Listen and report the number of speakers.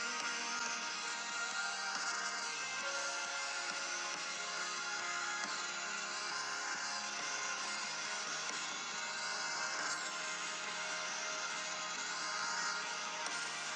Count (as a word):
zero